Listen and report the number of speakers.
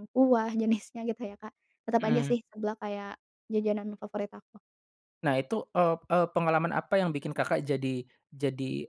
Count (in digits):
2